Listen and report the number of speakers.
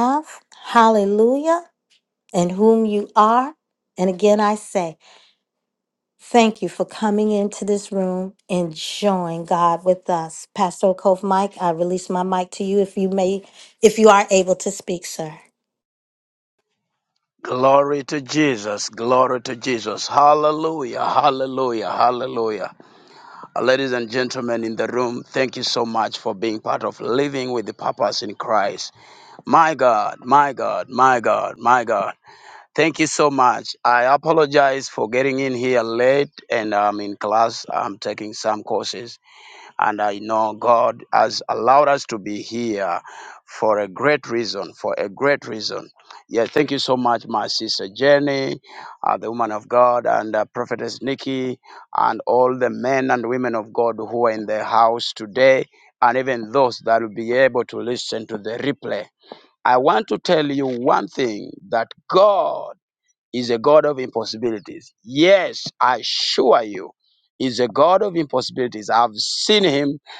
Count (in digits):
2